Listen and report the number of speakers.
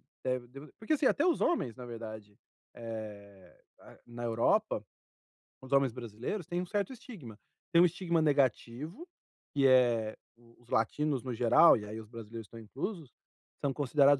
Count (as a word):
one